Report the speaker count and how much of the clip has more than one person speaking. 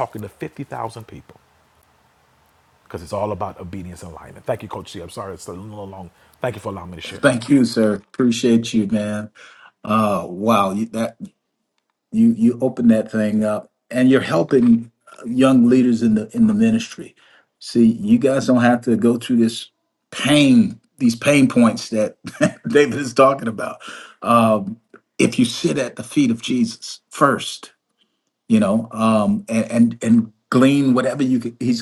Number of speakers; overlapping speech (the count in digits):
2, about 1%